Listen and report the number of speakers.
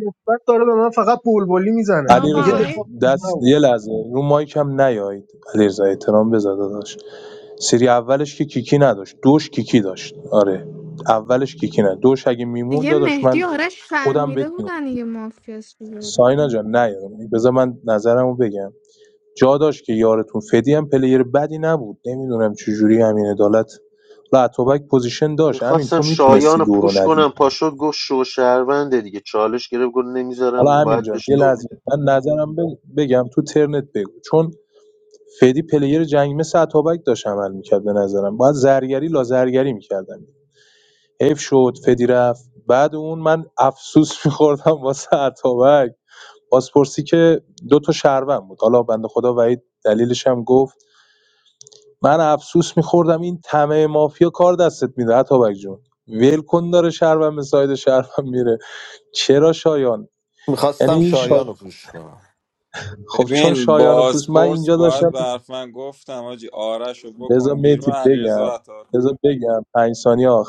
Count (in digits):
6